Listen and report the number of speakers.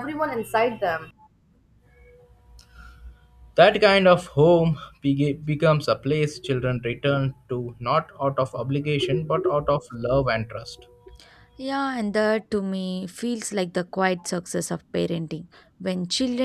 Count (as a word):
three